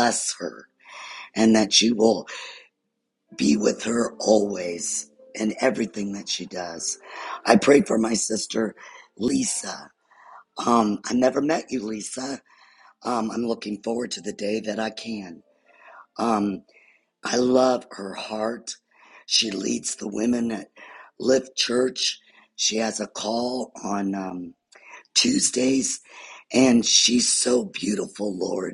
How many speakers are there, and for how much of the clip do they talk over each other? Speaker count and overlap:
1, no overlap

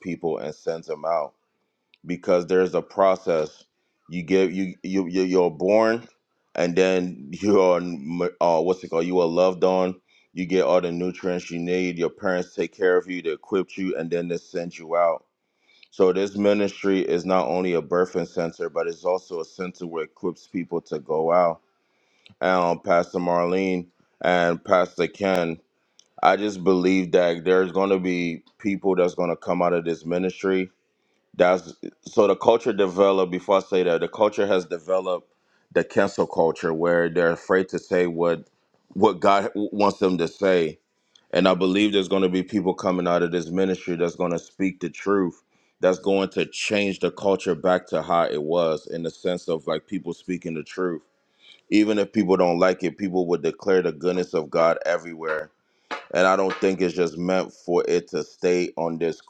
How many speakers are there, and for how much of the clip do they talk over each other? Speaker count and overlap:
1, no overlap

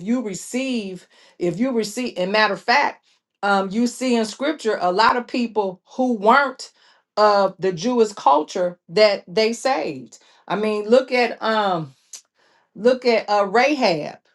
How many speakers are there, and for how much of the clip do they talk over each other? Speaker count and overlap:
1, no overlap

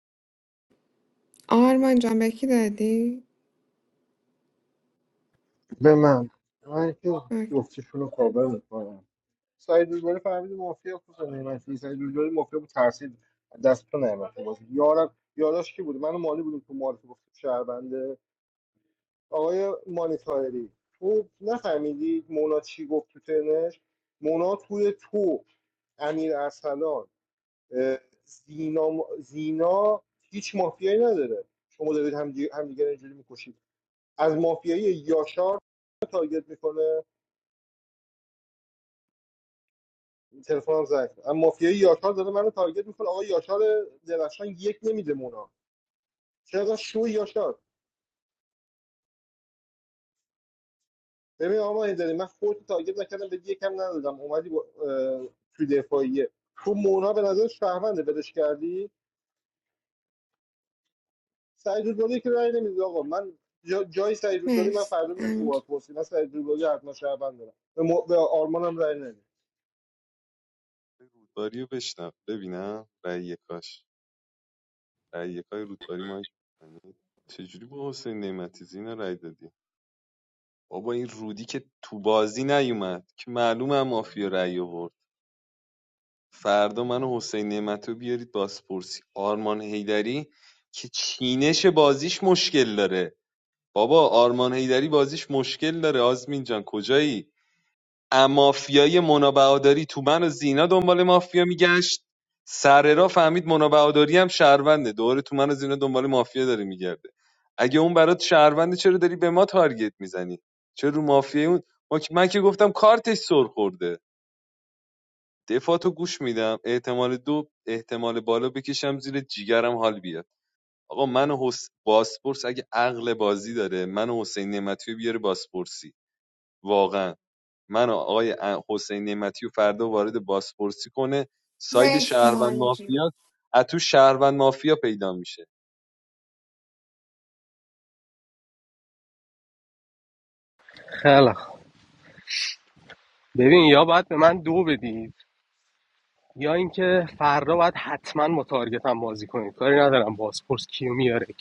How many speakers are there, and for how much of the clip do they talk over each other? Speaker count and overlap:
4, about 1%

